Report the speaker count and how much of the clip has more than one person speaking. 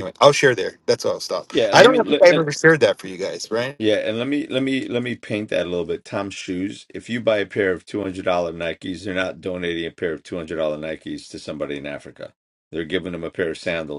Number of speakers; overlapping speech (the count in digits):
2, about 6%